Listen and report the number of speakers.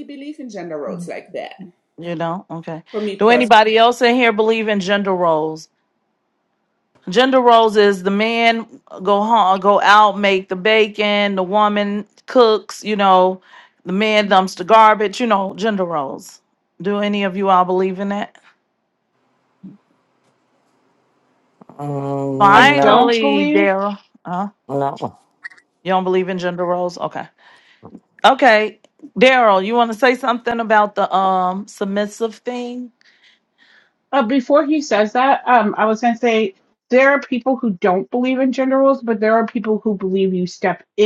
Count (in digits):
4